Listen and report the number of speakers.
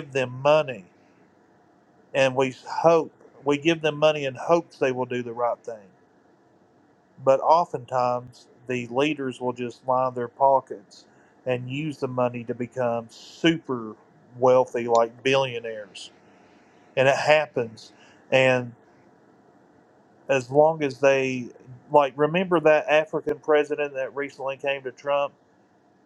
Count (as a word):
one